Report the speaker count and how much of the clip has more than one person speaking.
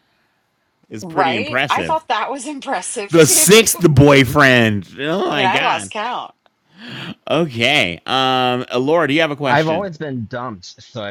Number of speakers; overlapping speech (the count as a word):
three, about 20%